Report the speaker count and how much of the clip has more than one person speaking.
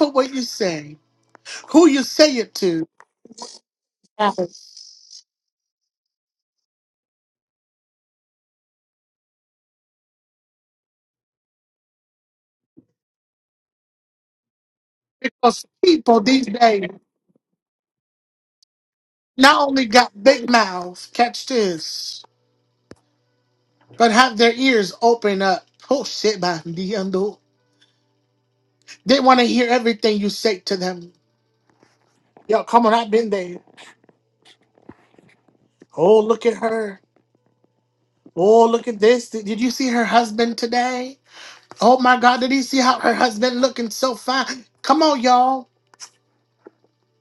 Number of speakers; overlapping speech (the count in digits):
1, no overlap